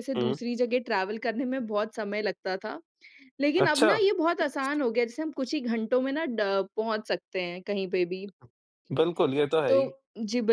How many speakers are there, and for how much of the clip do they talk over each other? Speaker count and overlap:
2, about 8%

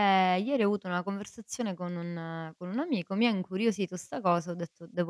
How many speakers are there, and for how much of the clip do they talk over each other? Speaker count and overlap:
1, no overlap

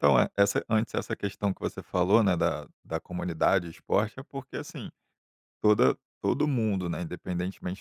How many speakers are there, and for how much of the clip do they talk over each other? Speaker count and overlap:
1, no overlap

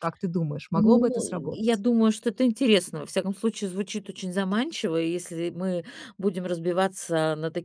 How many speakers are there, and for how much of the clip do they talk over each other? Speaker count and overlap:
2, about 6%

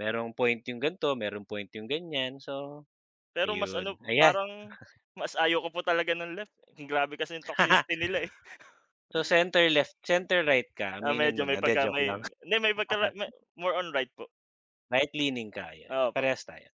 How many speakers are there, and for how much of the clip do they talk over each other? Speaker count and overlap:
2, about 15%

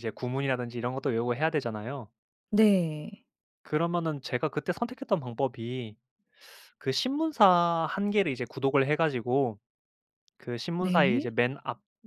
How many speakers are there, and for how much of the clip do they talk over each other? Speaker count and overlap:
2, about 4%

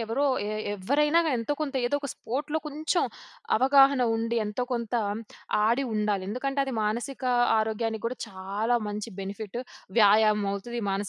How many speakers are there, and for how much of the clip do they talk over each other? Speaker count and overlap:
1, no overlap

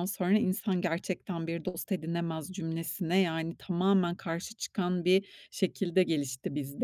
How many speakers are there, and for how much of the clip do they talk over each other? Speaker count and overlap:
1, no overlap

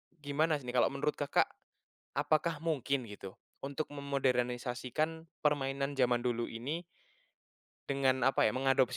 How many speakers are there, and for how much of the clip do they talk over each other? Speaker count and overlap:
1, no overlap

